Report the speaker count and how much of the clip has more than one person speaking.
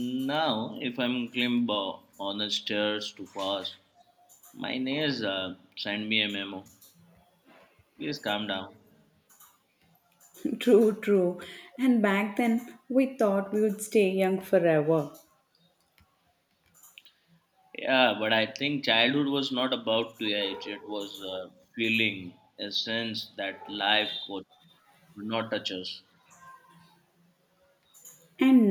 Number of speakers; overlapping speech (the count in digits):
2, no overlap